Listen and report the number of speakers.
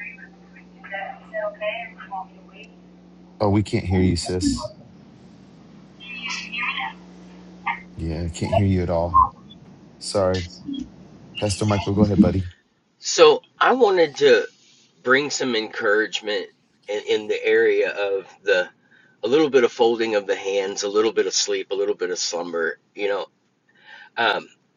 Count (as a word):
three